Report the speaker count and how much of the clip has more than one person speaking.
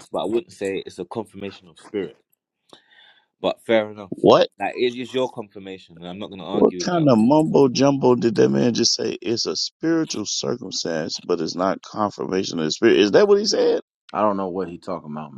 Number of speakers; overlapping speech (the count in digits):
3, about 4%